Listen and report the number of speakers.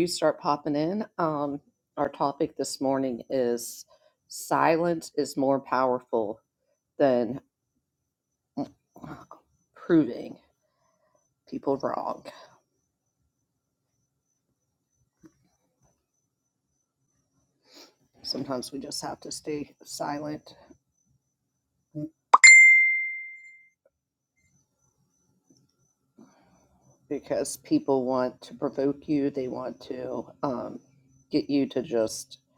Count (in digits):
1